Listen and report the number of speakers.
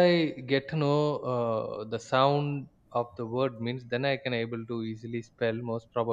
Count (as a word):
one